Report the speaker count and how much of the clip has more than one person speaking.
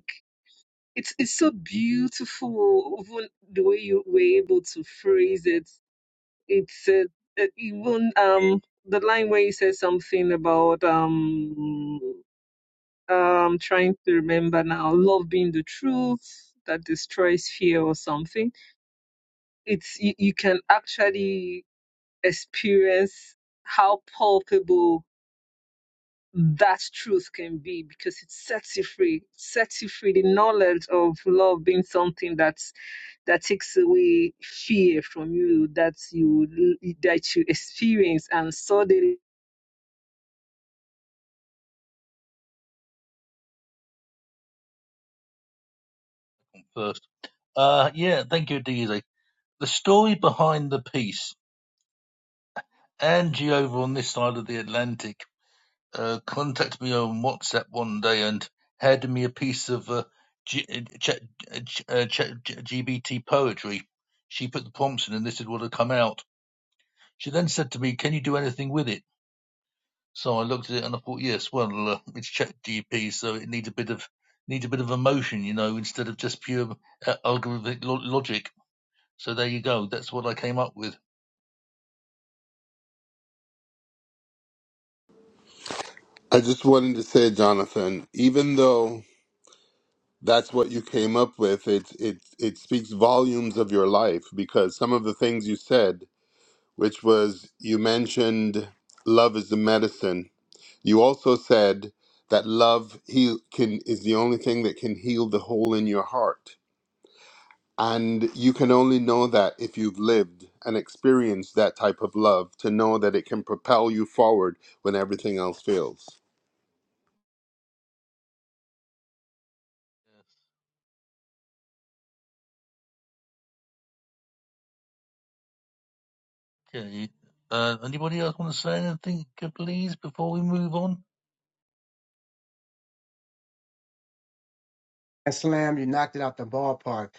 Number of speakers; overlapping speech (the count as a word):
four, no overlap